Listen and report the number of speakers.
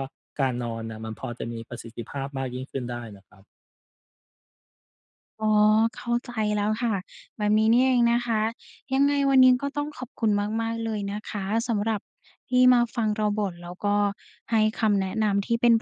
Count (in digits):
2